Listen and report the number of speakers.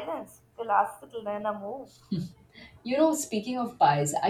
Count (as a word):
two